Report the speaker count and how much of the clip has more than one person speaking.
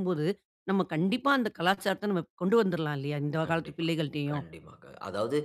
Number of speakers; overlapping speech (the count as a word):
two, about 11%